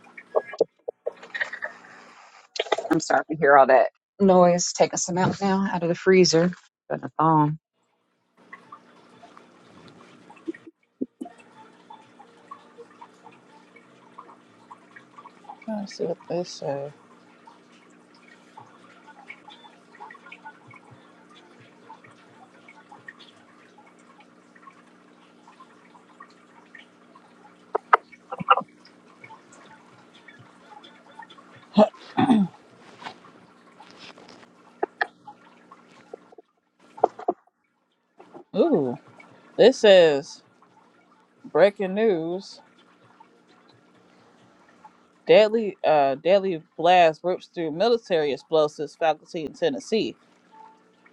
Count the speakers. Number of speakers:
2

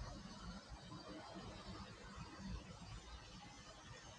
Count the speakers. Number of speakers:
0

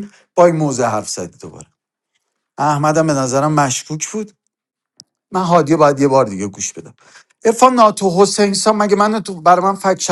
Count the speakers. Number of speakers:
1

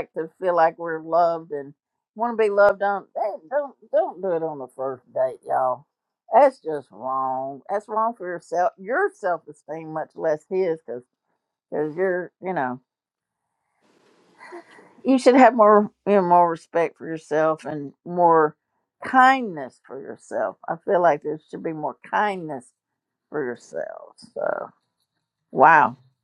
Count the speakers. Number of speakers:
1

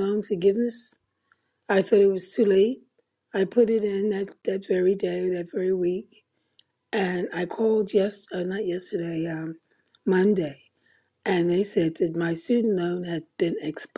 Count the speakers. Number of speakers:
1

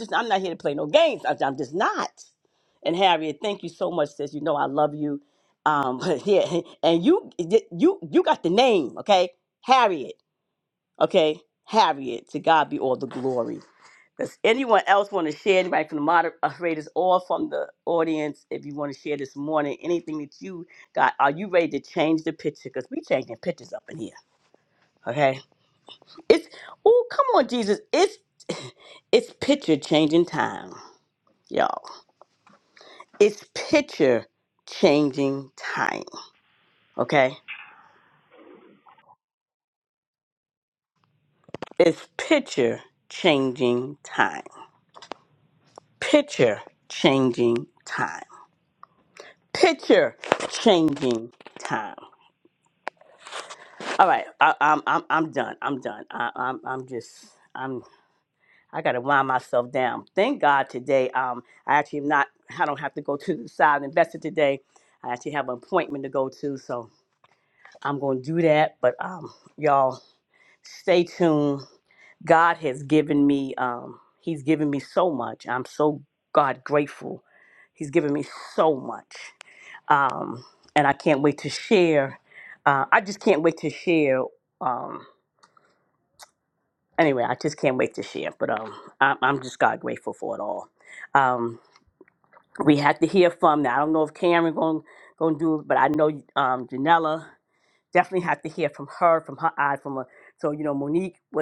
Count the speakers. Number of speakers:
1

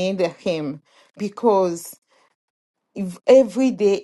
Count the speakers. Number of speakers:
1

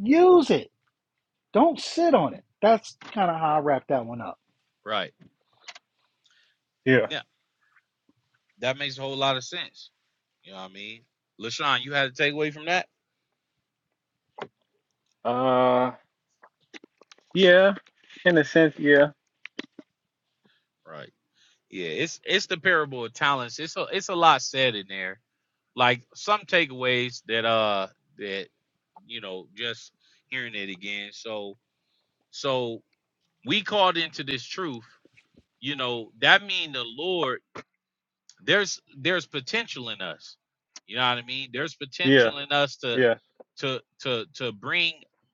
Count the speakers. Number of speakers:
3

